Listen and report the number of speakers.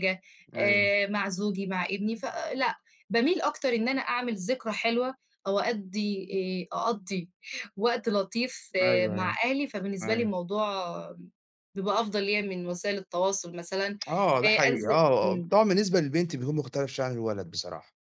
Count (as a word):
two